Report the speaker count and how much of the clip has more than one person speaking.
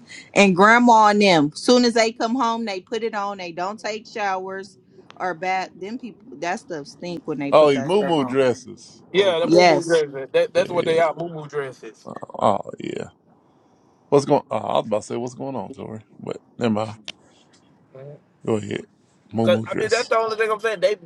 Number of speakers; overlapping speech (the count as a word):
three, about 12%